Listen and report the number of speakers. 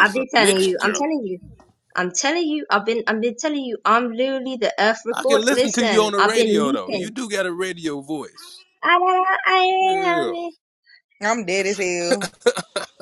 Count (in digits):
3